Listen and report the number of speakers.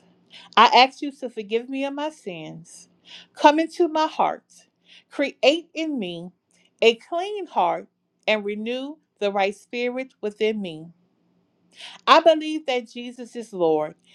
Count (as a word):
one